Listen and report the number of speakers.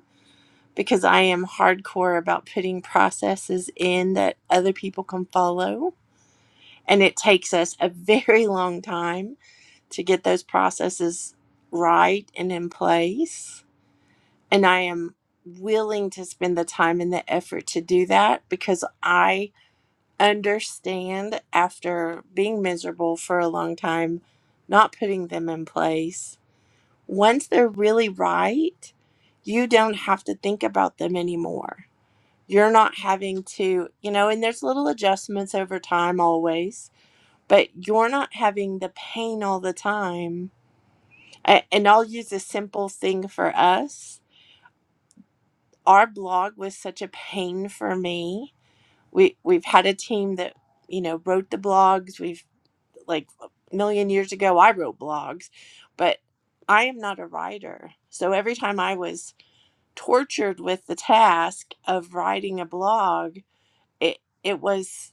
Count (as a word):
one